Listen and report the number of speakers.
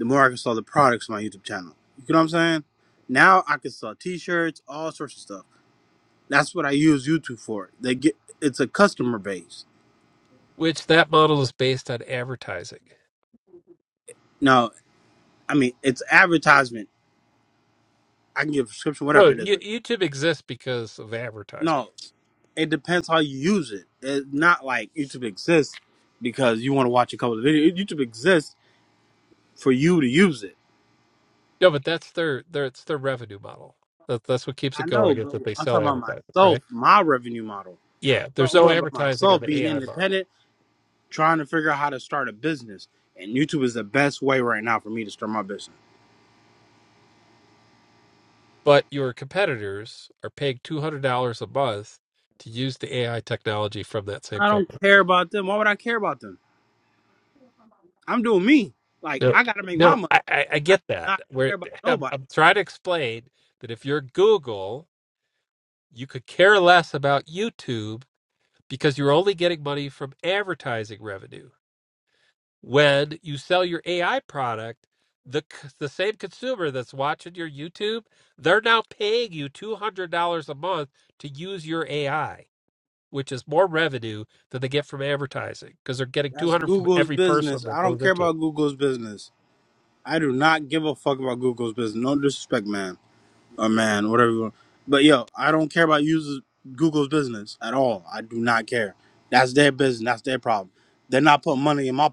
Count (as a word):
two